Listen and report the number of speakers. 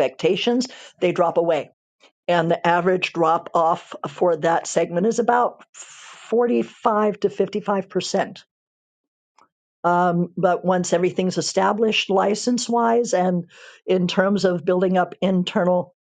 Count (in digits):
1